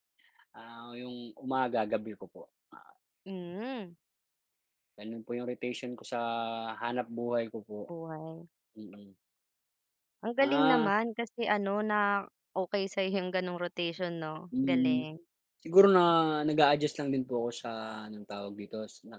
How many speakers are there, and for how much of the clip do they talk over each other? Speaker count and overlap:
2, about 5%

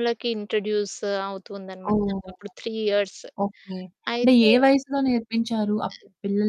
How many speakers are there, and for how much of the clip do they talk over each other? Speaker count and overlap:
2, about 14%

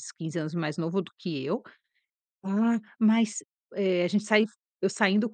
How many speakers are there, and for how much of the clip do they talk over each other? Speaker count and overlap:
1, no overlap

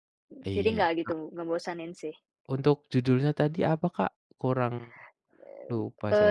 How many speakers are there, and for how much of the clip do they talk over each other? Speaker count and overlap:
2, about 19%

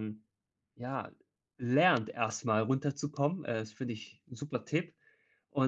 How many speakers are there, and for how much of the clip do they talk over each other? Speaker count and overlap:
1, no overlap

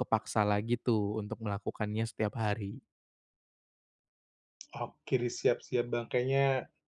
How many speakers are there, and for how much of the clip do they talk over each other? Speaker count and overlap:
2, no overlap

